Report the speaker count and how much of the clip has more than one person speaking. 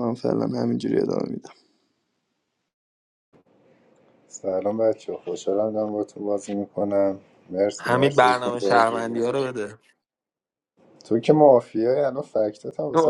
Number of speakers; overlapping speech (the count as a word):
three, about 12%